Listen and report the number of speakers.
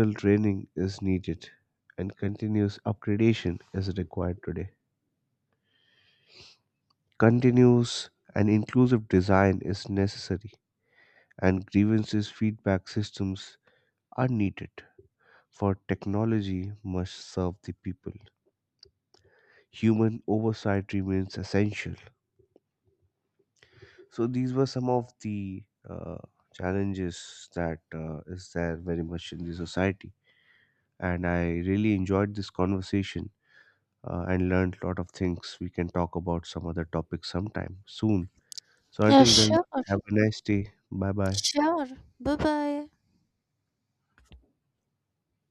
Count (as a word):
two